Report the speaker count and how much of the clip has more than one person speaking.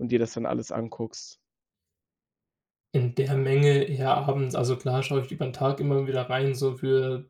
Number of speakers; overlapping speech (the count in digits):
2, no overlap